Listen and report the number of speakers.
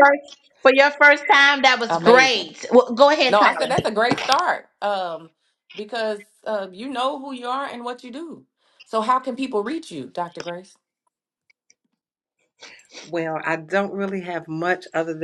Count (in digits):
3